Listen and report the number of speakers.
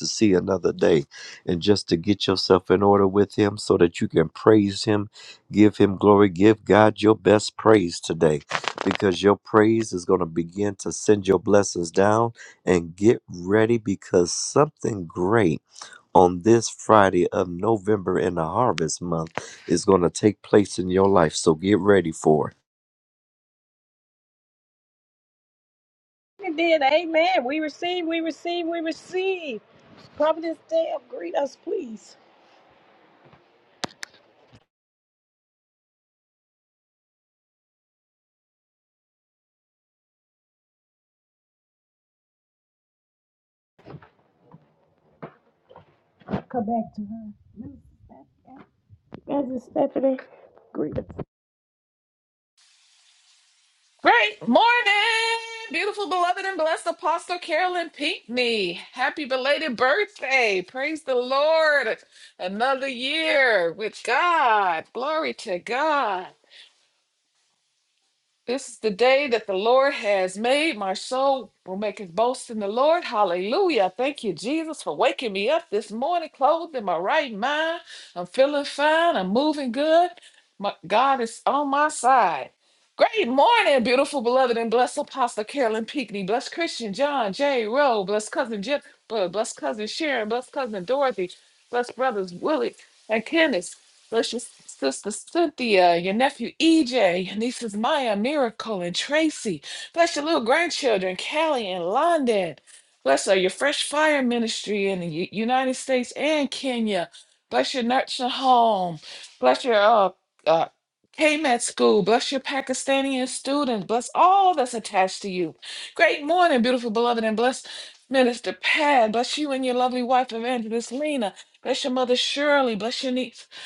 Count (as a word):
three